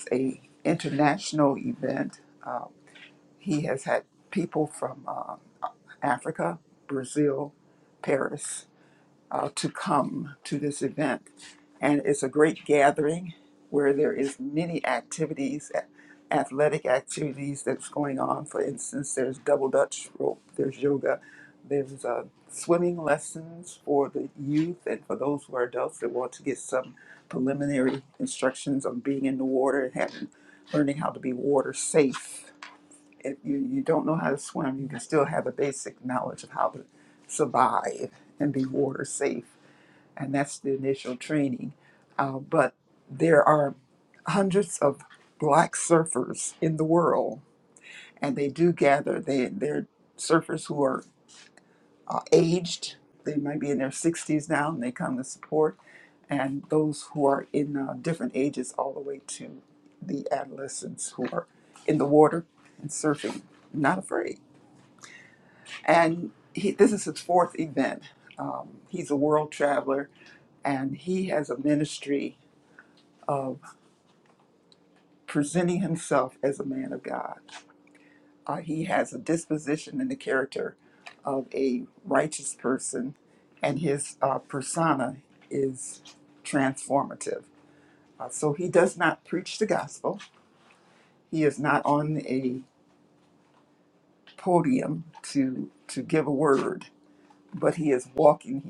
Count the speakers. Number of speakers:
1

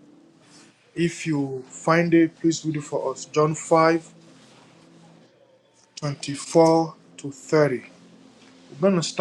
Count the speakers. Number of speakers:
1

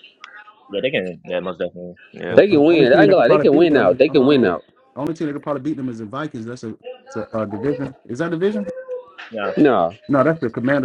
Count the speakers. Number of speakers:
3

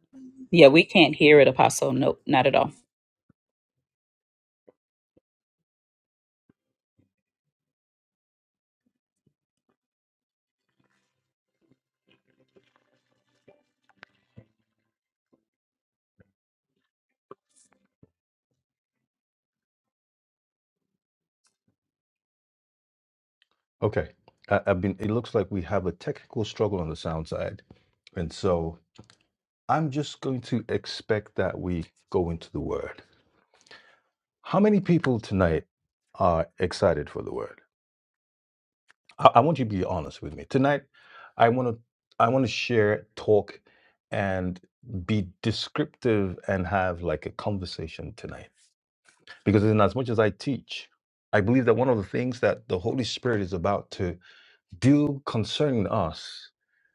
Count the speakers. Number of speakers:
2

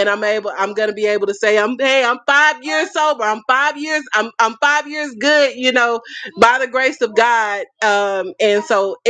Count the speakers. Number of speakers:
1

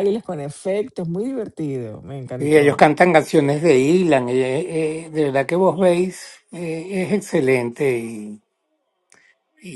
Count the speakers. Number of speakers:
2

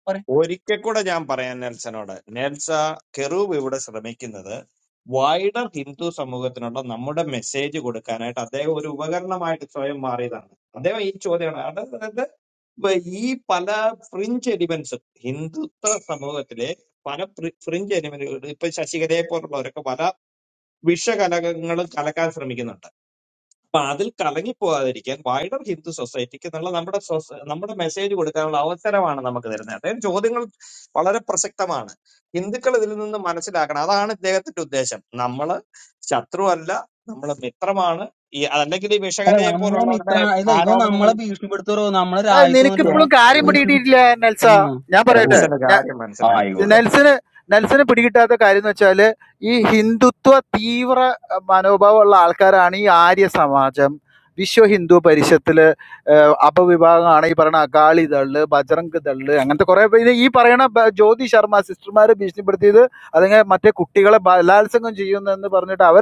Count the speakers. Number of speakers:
3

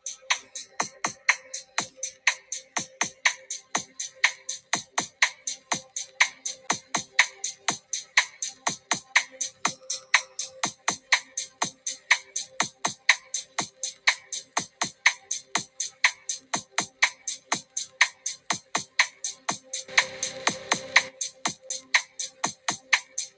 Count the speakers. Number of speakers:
0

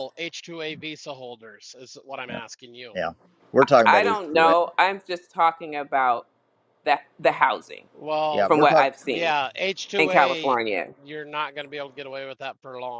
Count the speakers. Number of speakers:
3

